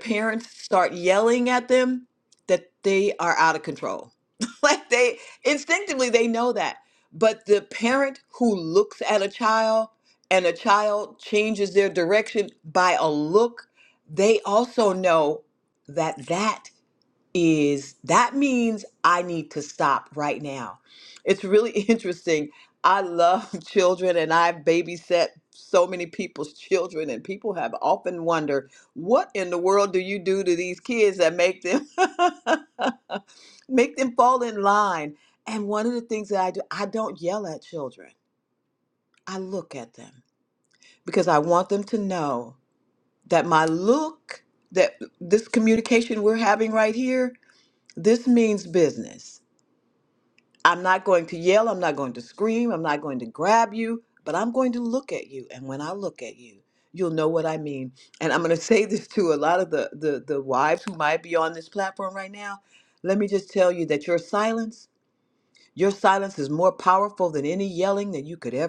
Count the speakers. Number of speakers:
1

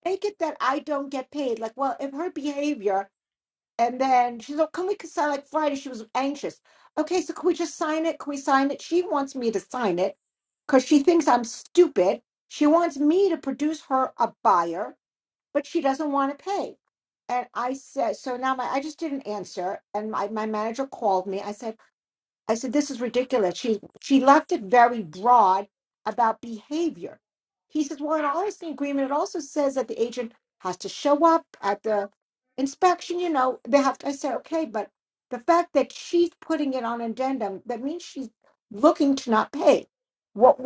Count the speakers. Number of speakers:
1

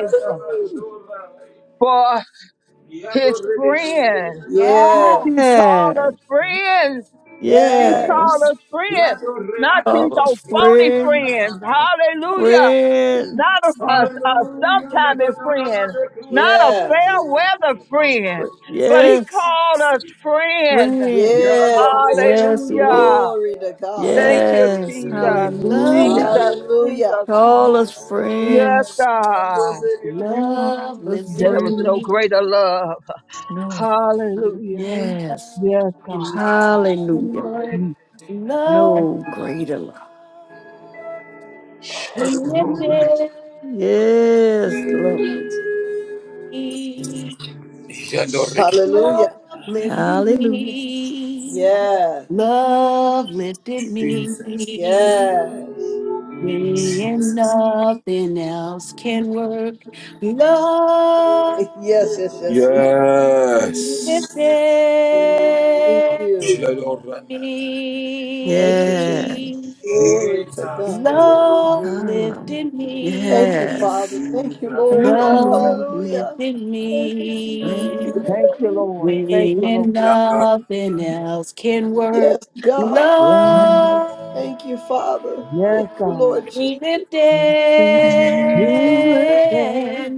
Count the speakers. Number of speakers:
5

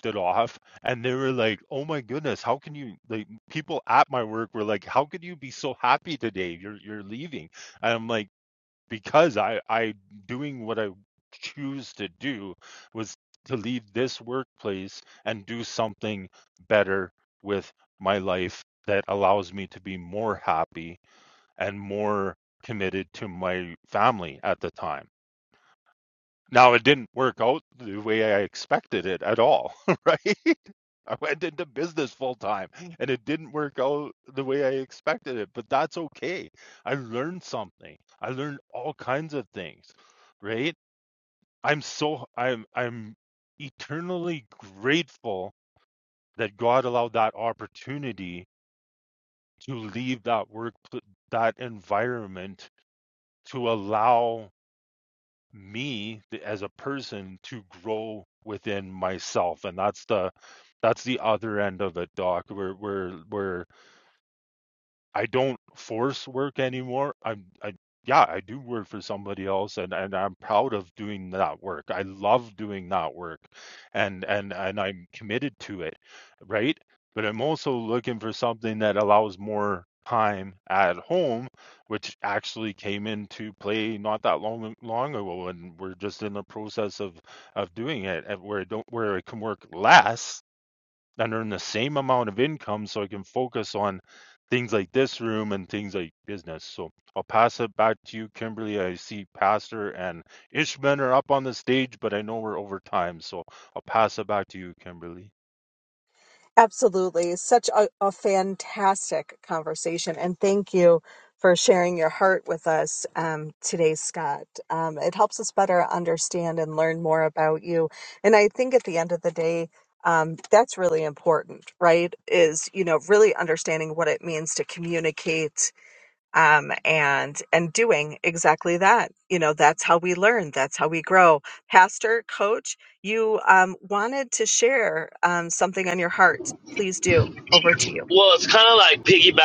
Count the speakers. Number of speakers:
3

